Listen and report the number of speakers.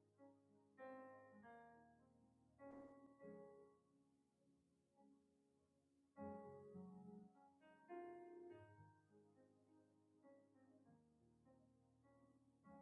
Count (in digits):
0